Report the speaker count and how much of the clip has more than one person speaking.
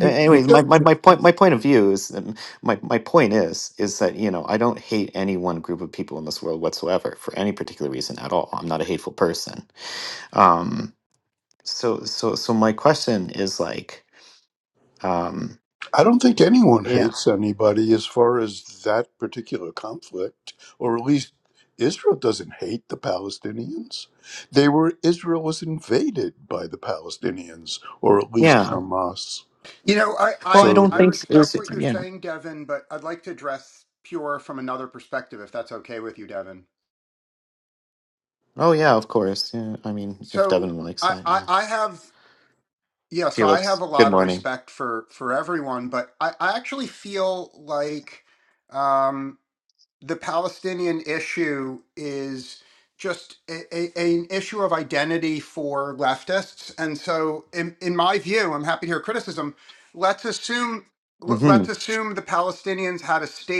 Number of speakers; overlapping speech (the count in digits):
3, about 7%